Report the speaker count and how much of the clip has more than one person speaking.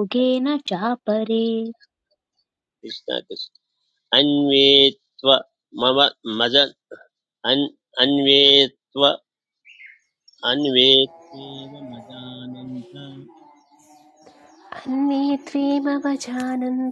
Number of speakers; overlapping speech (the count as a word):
three, no overlap